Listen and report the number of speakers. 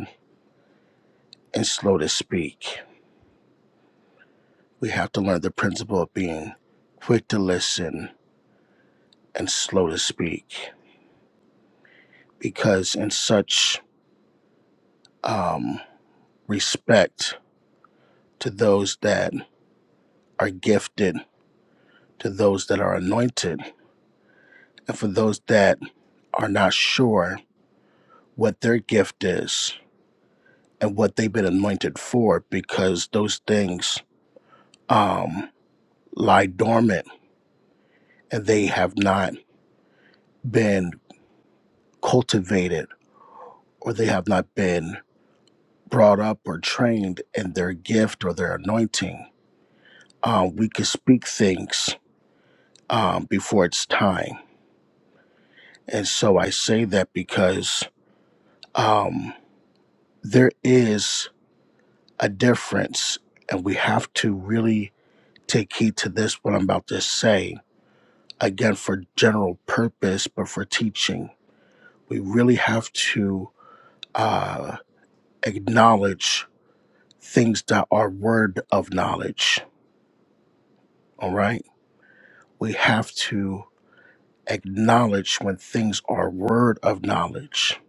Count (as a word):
one